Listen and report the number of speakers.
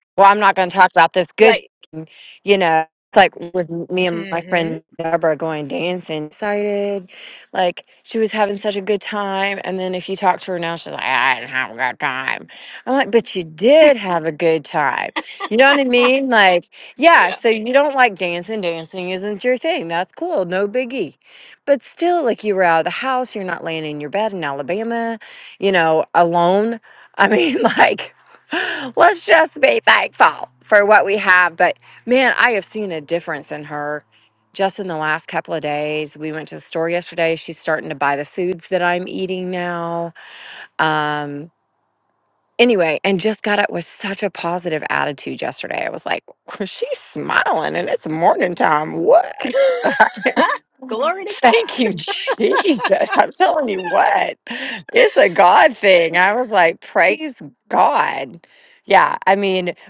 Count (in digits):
2